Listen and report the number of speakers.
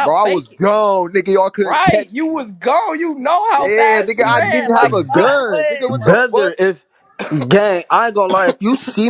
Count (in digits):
3